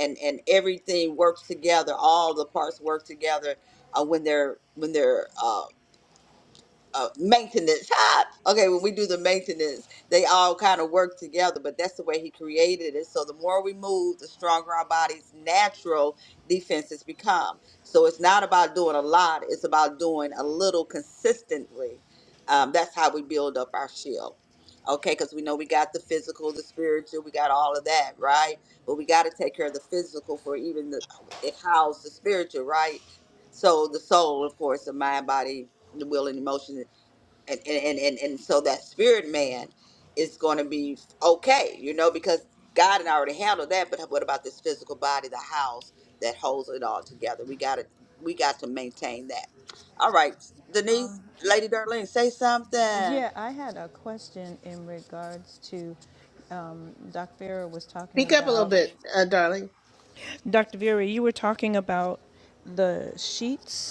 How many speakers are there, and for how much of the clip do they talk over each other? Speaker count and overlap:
three, about 1%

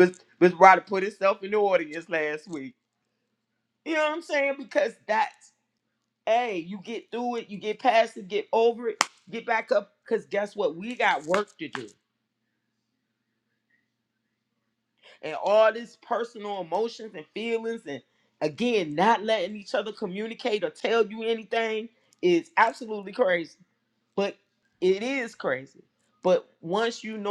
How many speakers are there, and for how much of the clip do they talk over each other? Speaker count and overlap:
one, no overlap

